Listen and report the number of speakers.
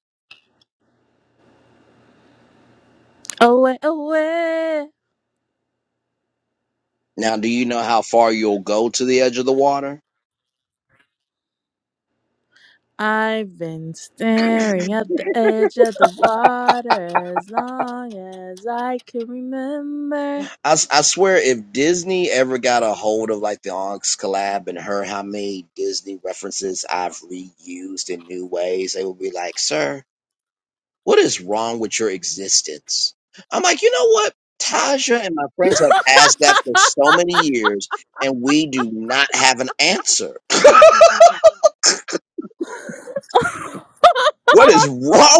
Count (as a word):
two